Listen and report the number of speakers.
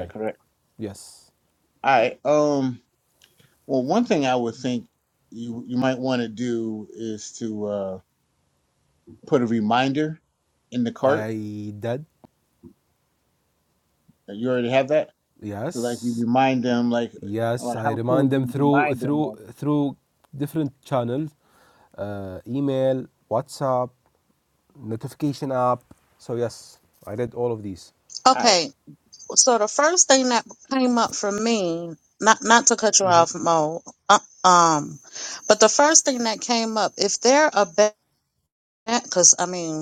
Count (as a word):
three